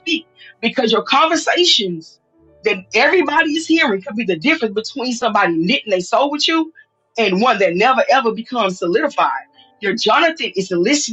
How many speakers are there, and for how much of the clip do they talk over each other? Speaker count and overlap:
1, no overlap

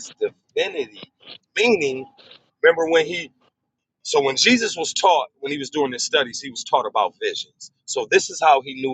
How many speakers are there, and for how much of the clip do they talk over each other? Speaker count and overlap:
1, no overlap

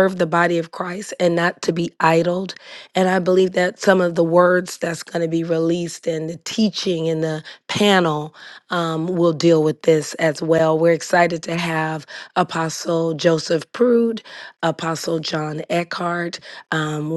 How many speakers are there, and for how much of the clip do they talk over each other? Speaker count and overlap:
1, no overlap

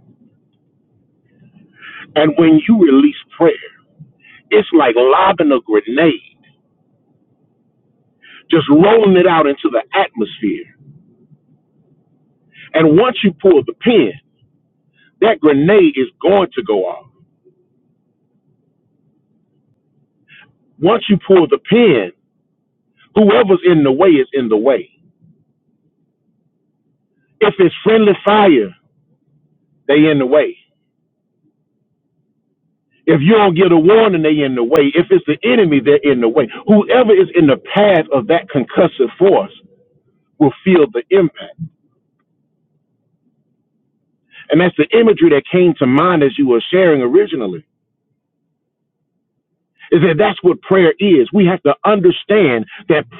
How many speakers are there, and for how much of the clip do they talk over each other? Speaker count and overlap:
1, no overlap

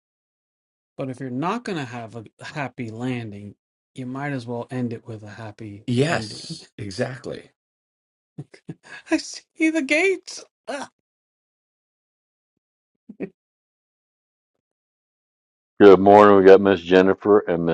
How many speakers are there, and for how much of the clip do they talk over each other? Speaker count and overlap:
3, about 4%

